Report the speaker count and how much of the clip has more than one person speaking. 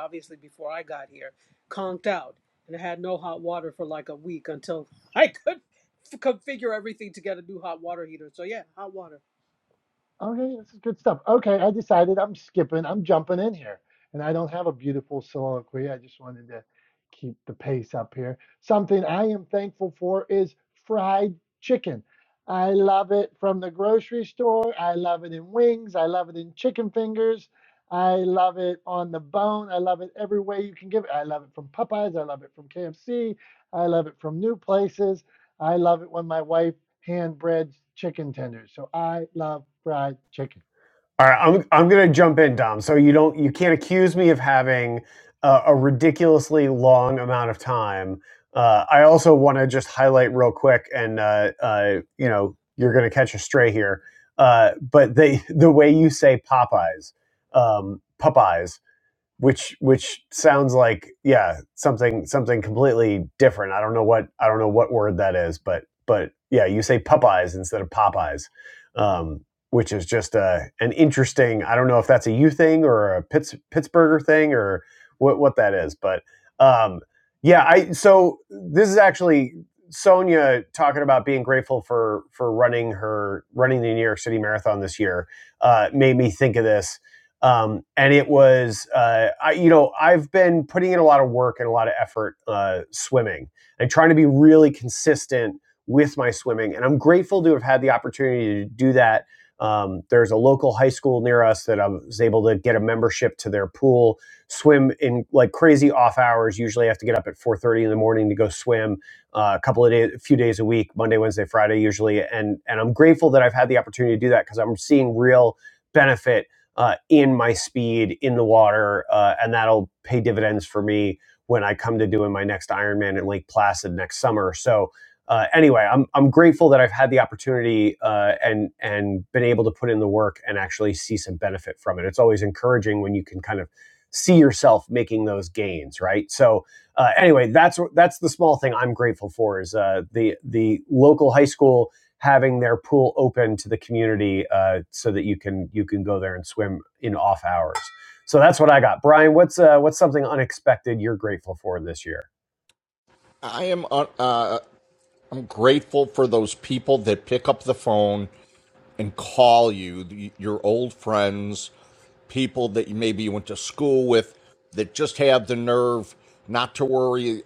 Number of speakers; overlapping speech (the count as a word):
four, no overlap